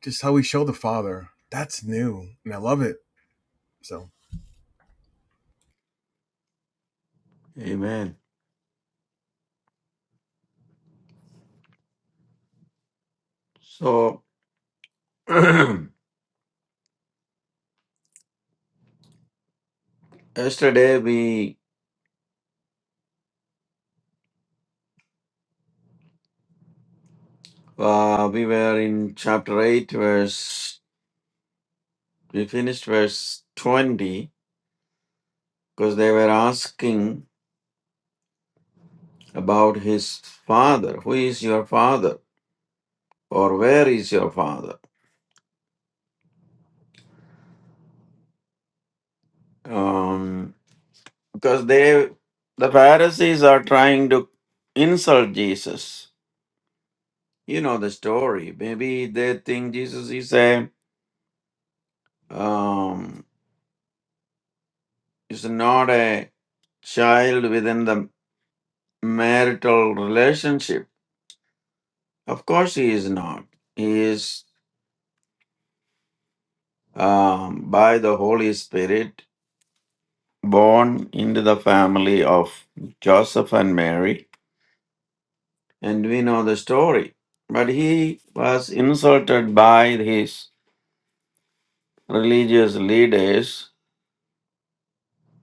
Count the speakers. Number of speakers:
2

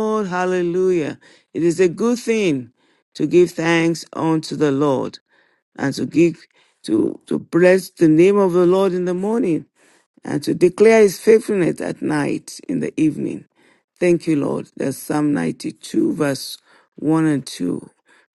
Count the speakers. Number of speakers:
1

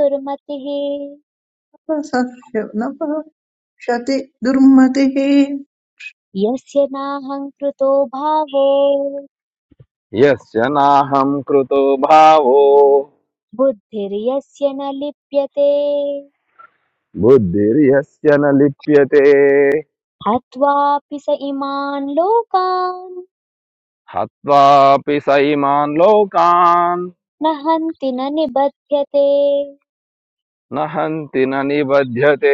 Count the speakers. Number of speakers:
3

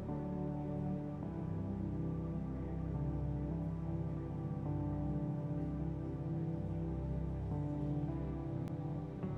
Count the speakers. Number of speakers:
0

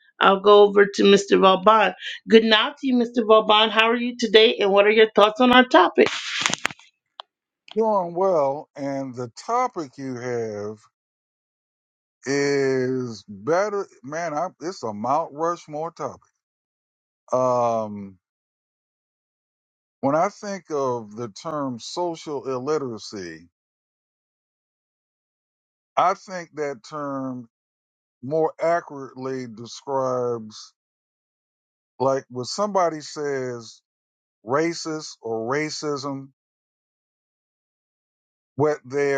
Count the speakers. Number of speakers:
2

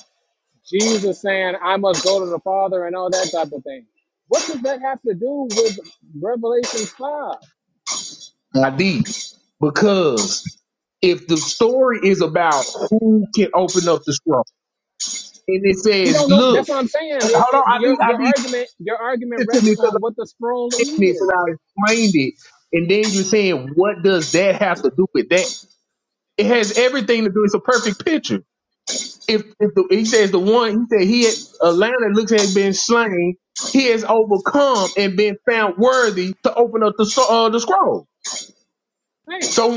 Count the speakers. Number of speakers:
2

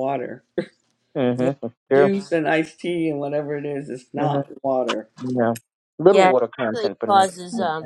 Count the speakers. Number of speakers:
3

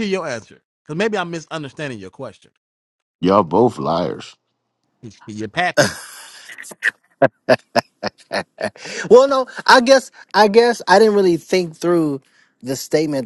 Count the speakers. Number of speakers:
3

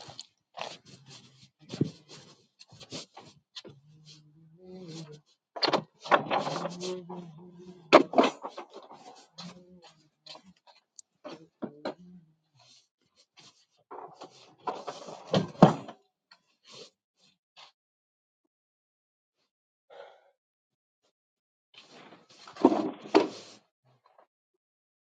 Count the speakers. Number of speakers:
0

